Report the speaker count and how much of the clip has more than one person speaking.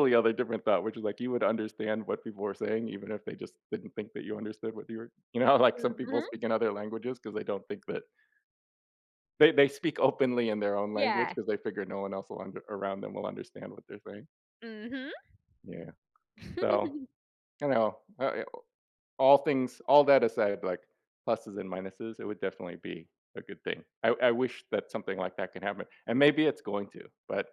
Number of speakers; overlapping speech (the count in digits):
2, about 3%